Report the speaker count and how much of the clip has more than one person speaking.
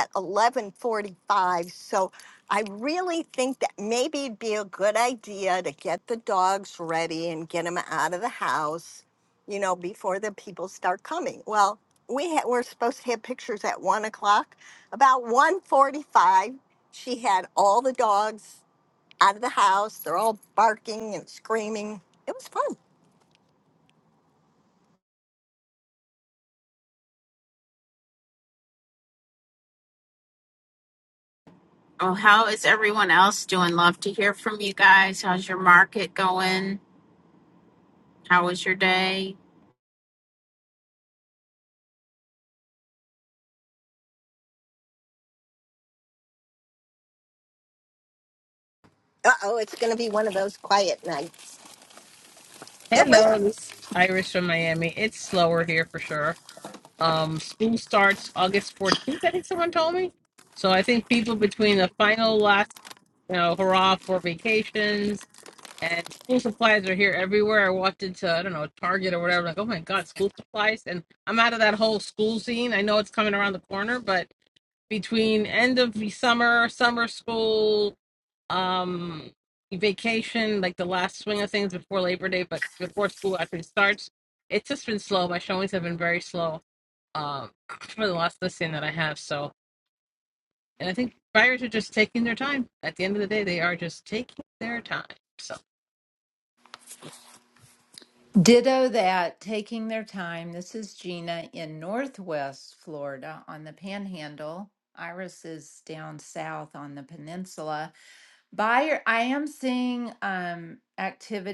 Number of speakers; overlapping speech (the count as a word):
four, under 1%